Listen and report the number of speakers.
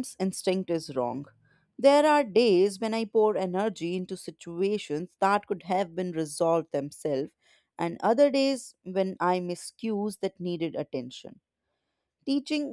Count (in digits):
1